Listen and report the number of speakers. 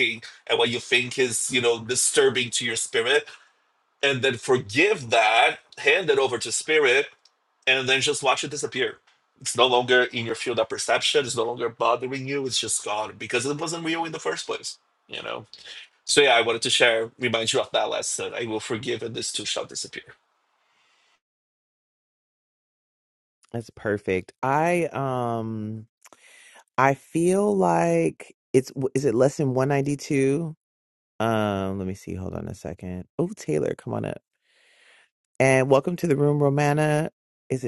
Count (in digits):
2